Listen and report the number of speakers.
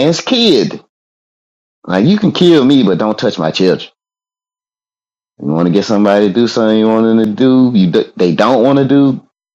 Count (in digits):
1